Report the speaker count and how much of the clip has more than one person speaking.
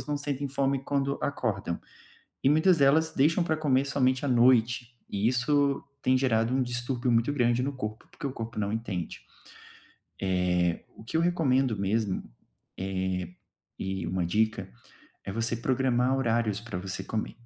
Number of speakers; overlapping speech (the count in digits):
1, no overlap